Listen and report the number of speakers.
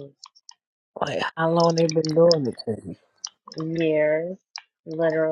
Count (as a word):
two